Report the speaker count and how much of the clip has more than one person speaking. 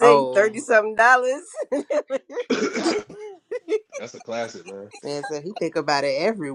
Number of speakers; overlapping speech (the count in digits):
3, about 9%